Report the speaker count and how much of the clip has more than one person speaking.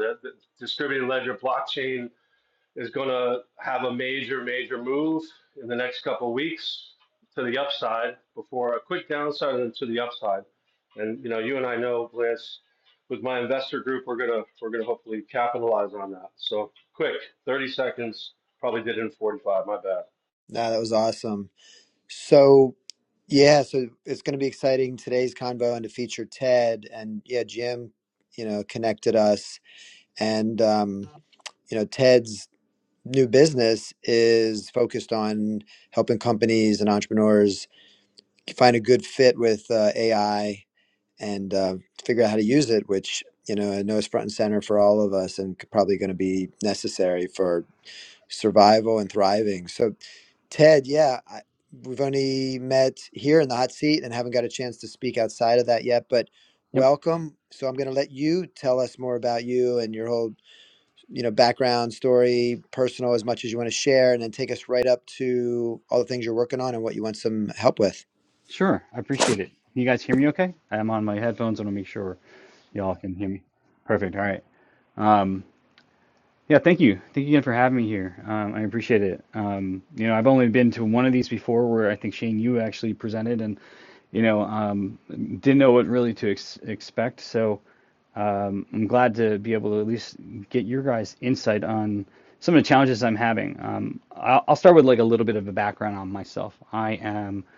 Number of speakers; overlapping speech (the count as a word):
three, under 1%